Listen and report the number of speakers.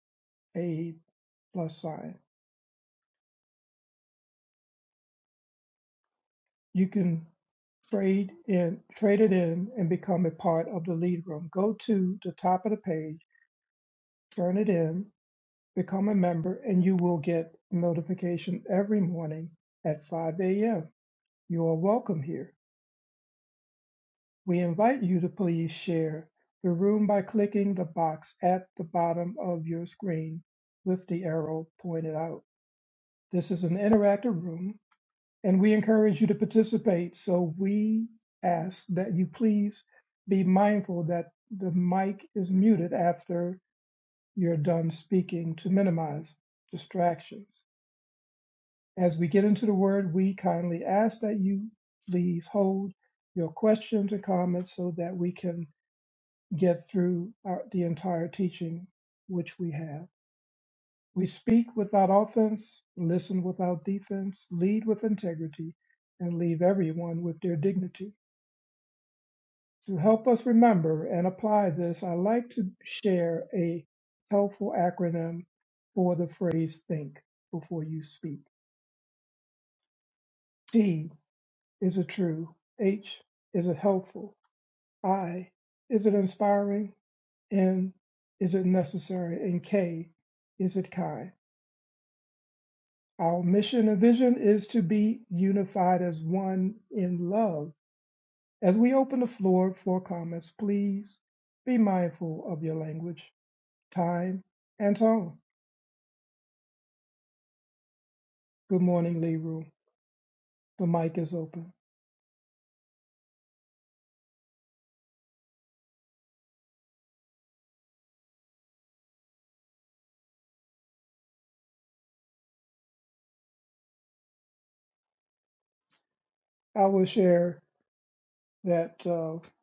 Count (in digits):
1